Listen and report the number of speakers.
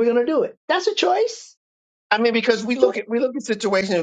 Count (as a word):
two